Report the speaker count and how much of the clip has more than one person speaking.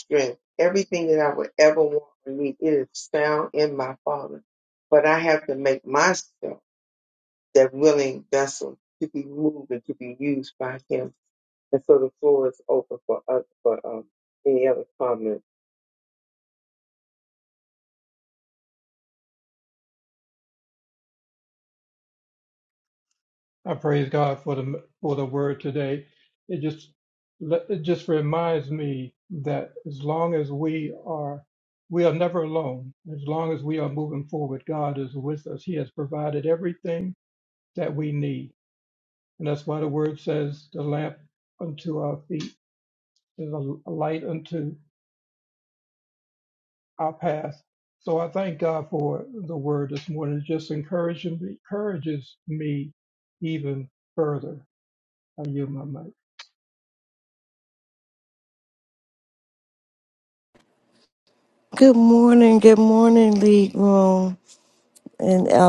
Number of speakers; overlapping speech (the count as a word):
three, no overlap